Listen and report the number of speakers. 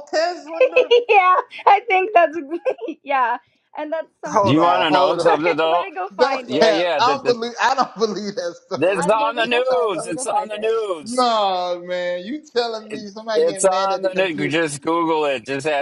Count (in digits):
3